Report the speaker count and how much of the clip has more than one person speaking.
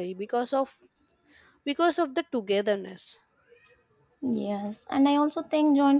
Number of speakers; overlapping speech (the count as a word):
two, no overlap